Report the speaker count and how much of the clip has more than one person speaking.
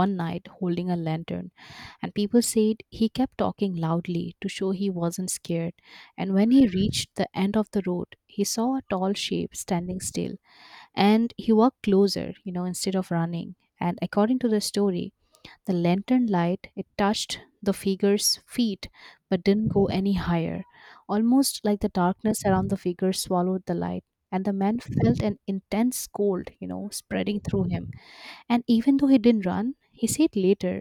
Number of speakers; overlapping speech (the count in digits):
1, no overlap